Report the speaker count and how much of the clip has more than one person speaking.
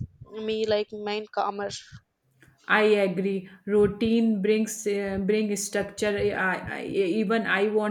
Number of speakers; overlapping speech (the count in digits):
2, no overlap